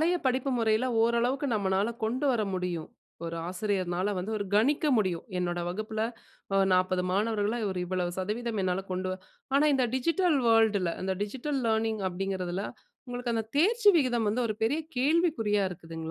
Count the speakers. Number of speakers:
one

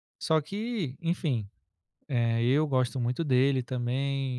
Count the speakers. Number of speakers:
one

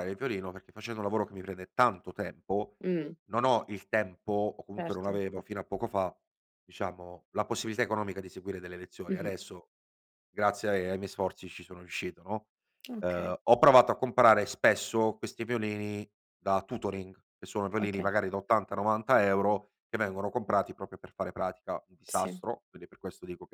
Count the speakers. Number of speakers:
two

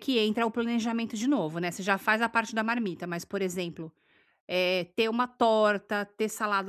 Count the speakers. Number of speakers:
one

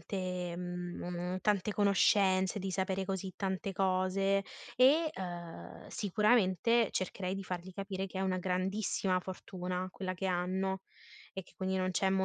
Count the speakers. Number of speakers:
one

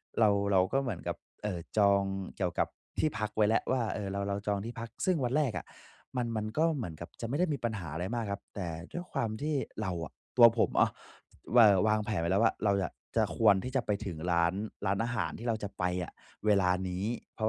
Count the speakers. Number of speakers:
one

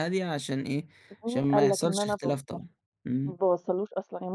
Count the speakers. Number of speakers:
two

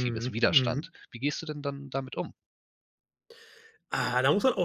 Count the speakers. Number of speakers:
two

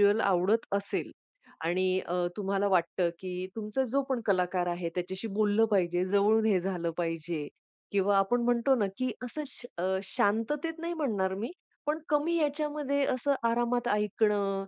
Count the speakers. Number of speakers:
one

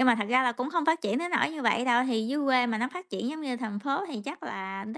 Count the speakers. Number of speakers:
one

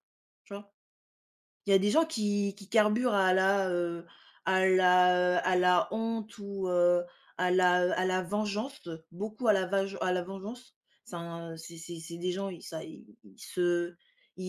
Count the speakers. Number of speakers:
one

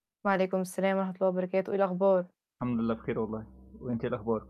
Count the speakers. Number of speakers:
two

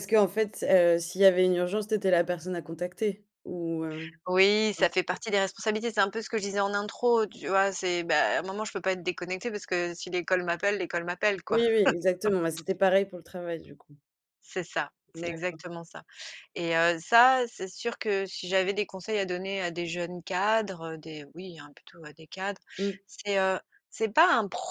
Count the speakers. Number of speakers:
two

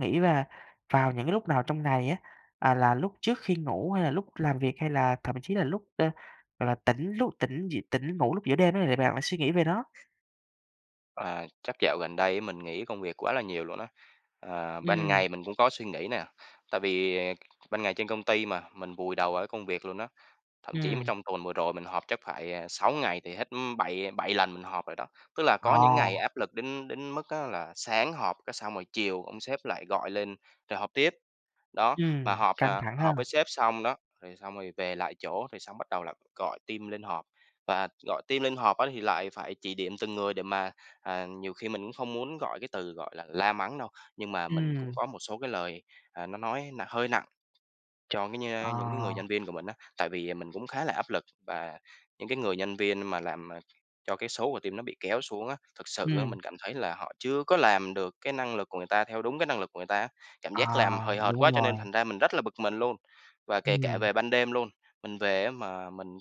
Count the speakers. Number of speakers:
two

